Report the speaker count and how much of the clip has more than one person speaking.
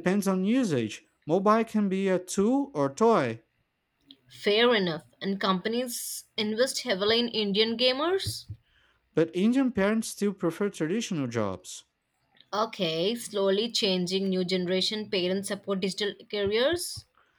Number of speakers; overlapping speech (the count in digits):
2, no overlap